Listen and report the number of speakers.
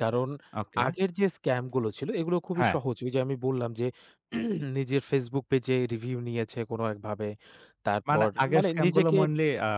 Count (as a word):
two